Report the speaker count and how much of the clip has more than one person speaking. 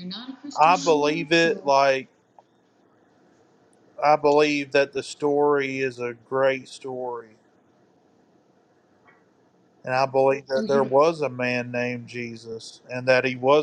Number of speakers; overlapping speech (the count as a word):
two, about 12%